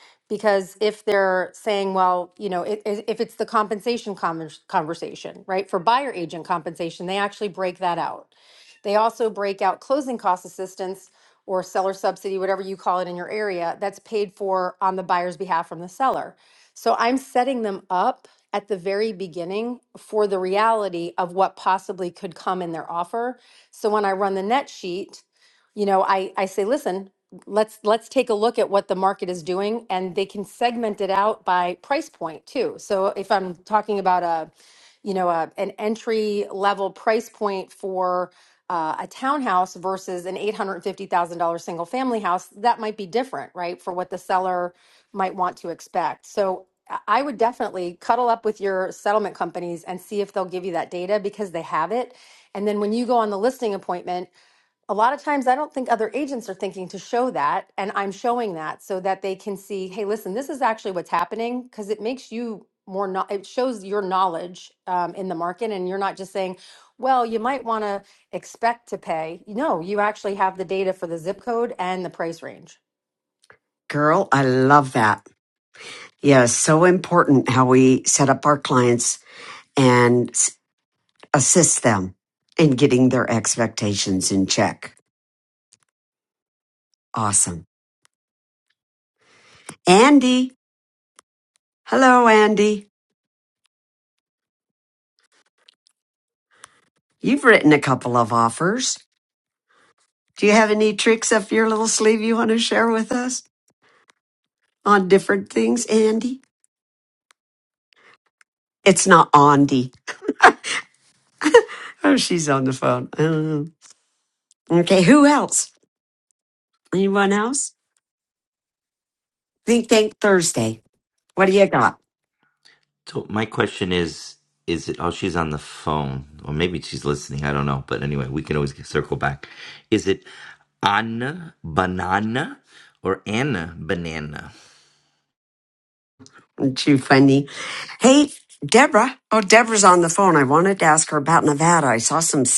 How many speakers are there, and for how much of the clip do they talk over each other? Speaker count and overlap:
3, no overlap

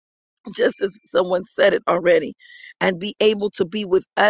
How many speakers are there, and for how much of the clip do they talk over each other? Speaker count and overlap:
1, no overlap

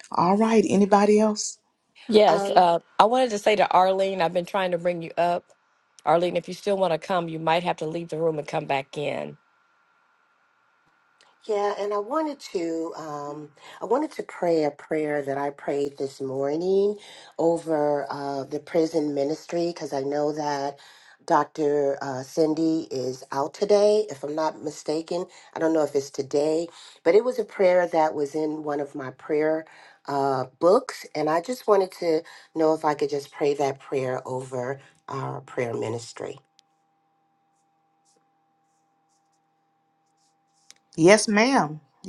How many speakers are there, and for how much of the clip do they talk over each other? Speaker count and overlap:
3, about 1%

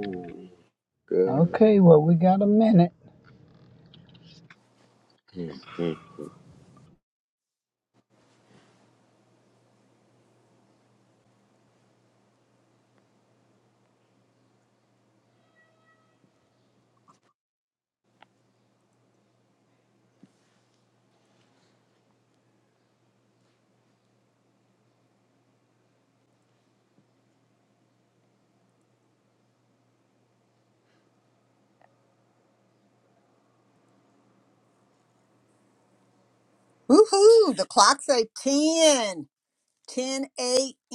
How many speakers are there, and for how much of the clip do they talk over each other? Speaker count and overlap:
3, about 1%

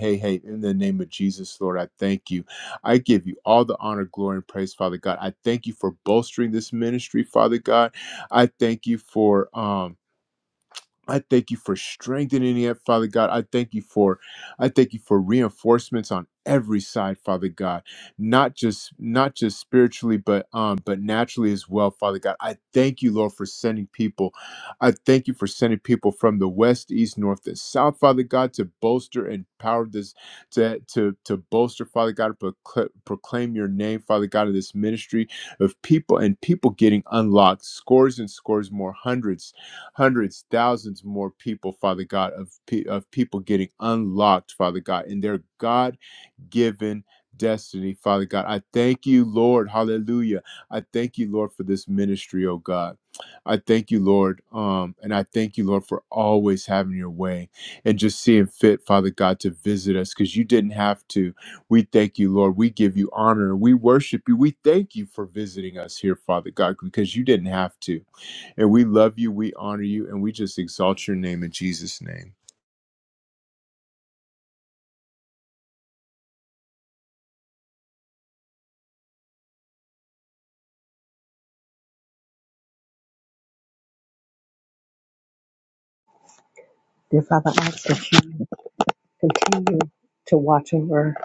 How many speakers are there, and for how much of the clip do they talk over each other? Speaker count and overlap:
2, no overlap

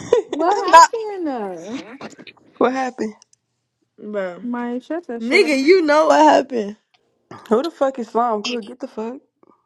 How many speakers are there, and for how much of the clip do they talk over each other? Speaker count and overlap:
3, about 7%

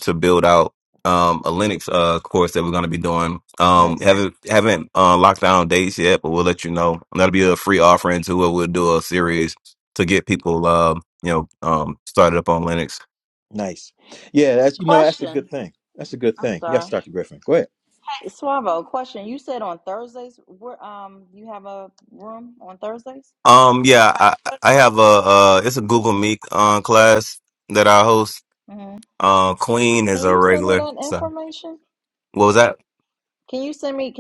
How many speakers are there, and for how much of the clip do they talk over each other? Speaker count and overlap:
3, about 7%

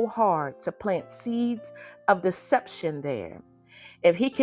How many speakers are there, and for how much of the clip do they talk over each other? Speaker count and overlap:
1, no overlap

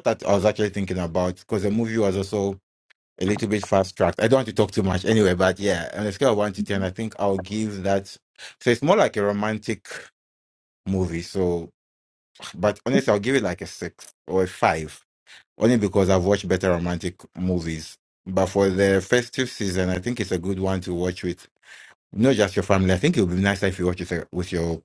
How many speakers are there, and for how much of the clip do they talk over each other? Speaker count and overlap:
1, no overlap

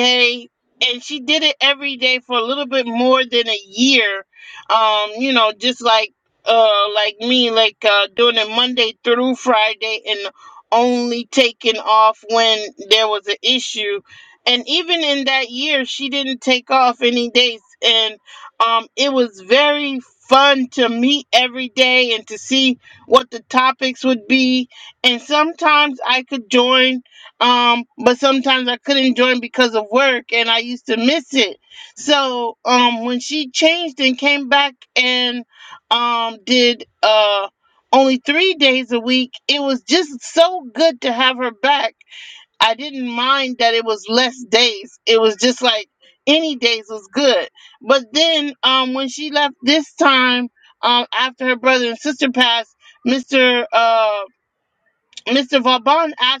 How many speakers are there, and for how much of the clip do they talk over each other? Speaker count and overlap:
1, no overlap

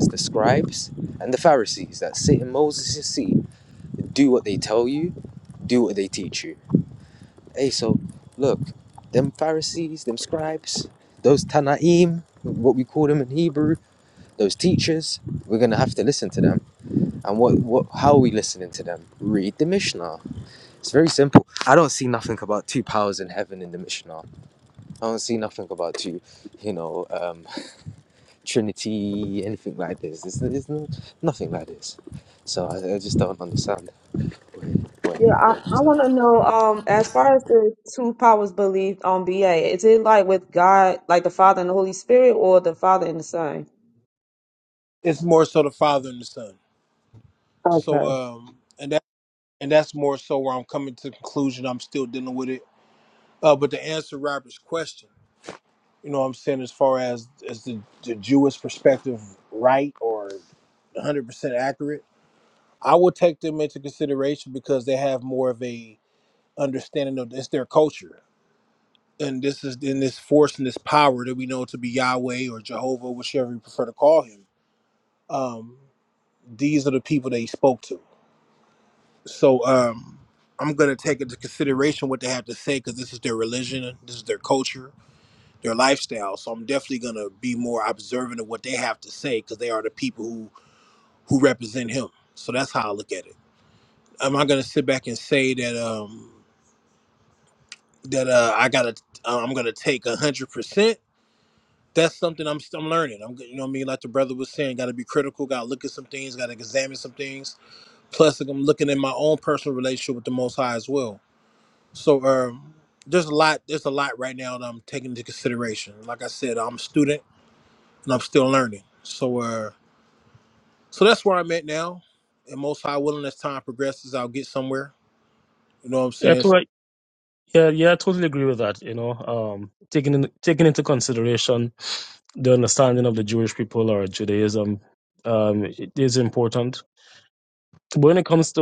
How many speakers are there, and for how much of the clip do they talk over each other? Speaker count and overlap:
4, about 1%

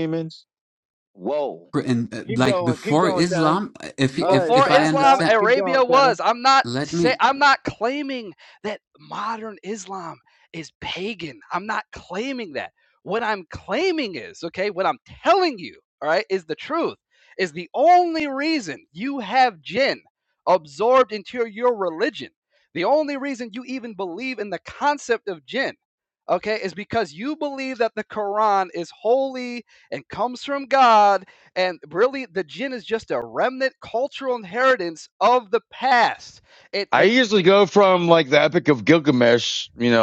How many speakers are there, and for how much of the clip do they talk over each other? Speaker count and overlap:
4, about 10%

